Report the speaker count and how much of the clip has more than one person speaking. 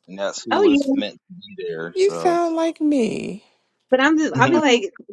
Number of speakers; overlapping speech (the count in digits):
3, about 25%